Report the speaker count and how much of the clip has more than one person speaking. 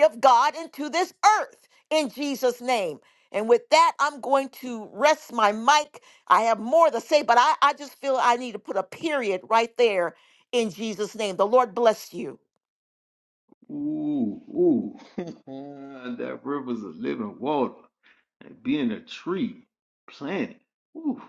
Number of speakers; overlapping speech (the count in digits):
2, no overlap